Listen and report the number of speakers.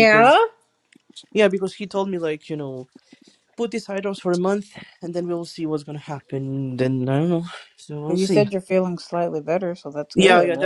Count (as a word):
two